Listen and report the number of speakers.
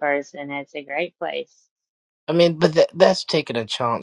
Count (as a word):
two